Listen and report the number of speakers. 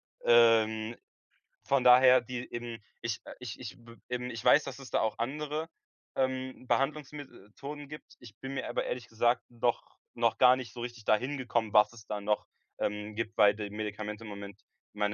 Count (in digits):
1